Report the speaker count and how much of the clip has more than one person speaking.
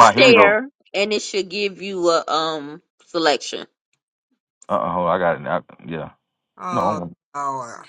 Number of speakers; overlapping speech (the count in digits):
3, about 10%